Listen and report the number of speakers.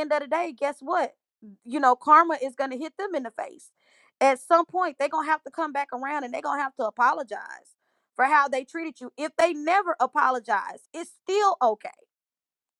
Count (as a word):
one